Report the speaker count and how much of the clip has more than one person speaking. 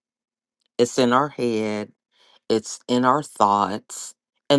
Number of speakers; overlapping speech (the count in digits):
1, no overlap